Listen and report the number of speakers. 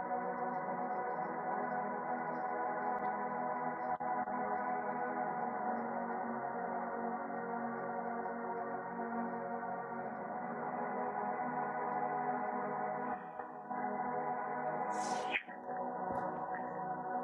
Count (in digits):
0